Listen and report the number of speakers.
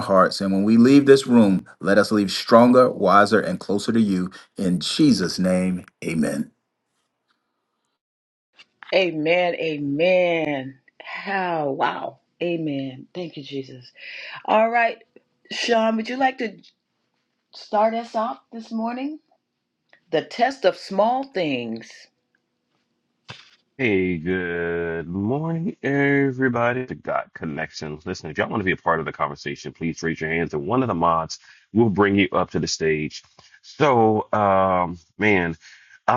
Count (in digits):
3